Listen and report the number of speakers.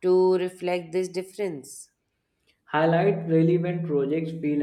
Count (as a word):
two